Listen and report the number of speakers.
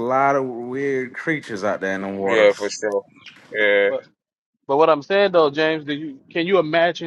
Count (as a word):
three